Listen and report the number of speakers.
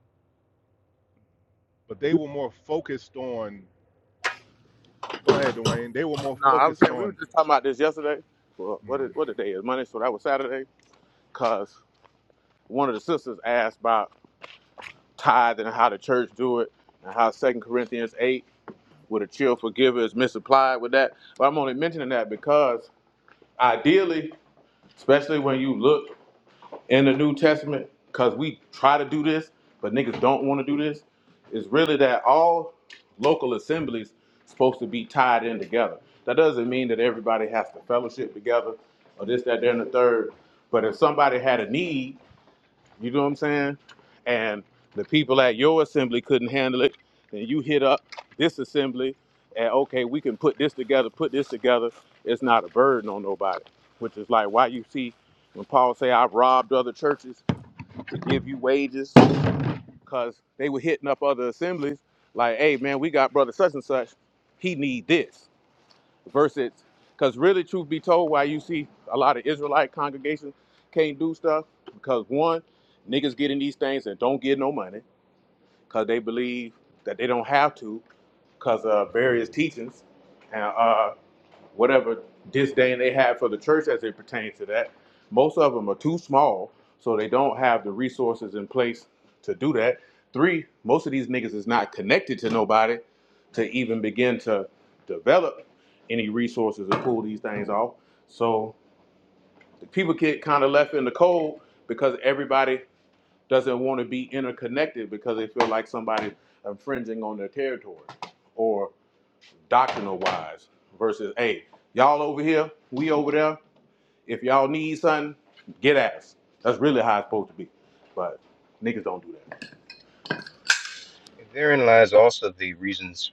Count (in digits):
3